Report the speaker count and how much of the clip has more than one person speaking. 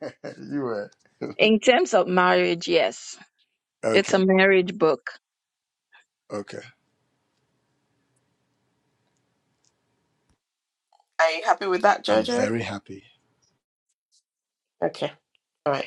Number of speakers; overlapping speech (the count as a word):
three, about 4%